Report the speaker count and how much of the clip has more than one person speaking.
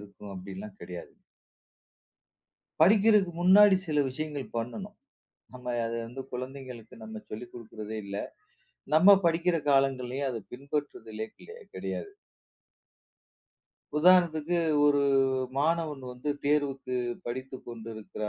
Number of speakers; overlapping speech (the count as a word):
one, no overlap